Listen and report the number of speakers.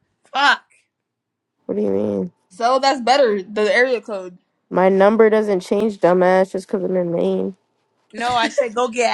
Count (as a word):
three